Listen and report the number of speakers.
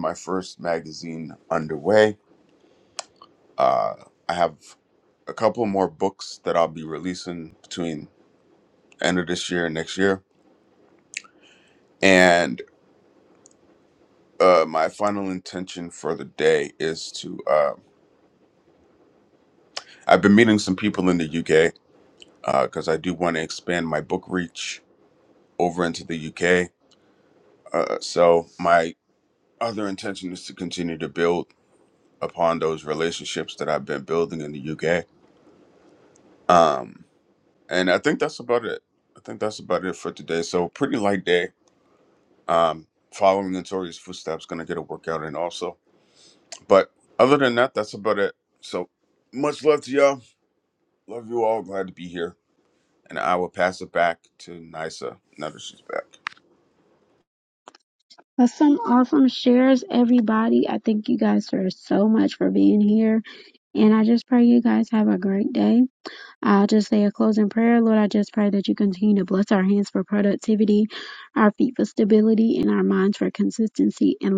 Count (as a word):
two